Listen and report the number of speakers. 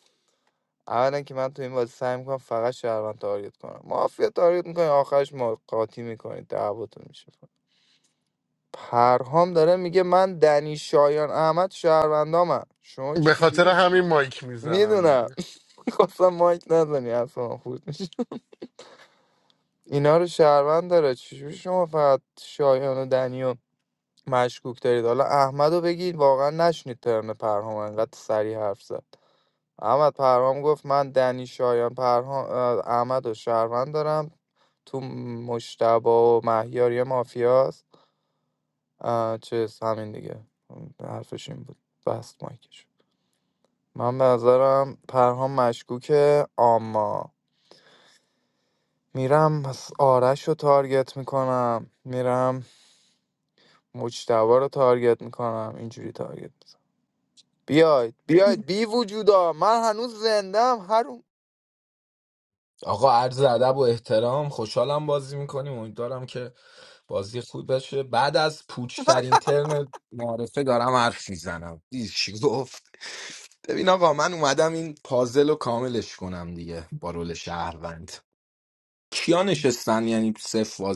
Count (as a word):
three